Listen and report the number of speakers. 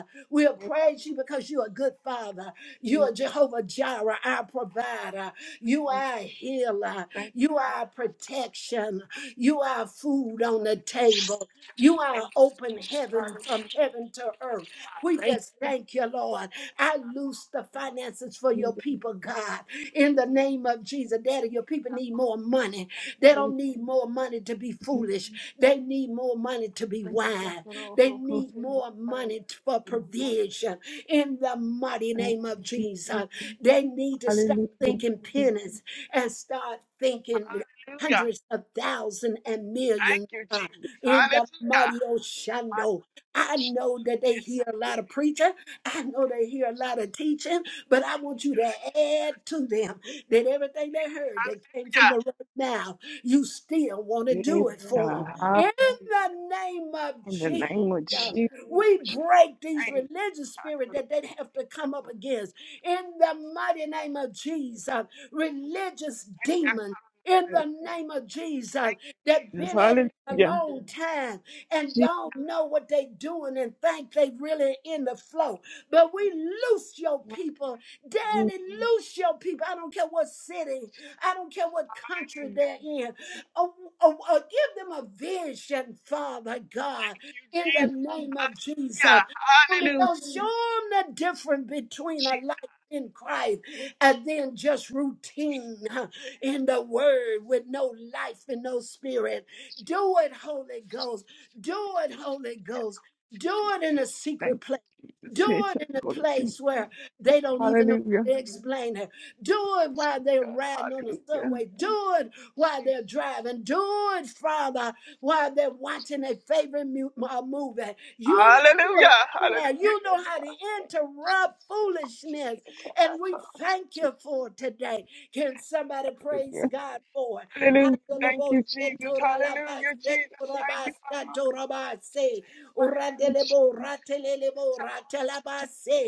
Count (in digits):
2